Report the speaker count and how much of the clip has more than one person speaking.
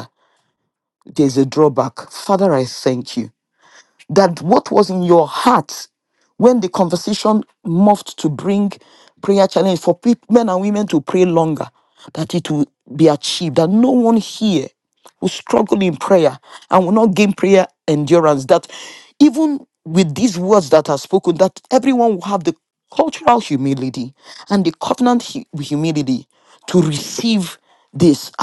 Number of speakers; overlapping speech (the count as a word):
one, no overlap